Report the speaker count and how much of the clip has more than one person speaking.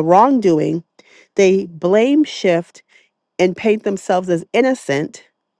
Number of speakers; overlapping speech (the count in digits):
1, no overlap